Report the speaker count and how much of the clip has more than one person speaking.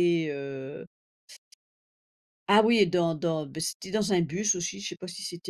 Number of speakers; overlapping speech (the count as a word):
one, no overlap